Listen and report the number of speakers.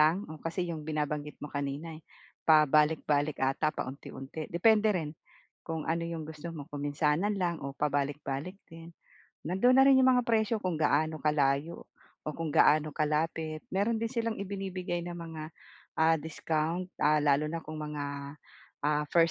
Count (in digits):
1